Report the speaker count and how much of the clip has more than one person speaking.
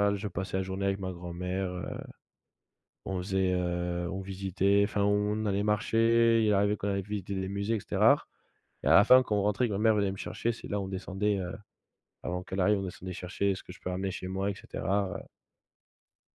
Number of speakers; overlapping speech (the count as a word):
one, no overlap